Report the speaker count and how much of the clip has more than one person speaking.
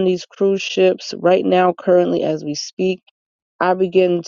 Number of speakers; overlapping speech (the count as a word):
one, no overlap